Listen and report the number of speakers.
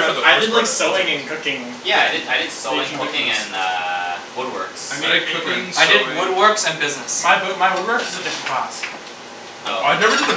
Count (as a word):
four